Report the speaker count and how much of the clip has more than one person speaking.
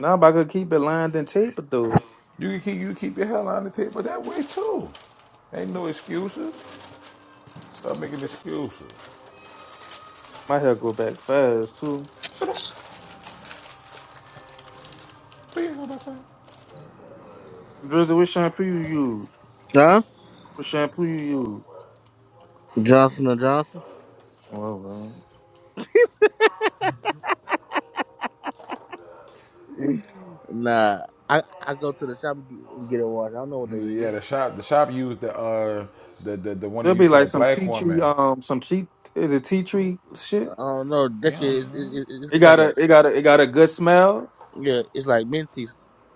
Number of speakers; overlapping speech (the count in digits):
3, about 6%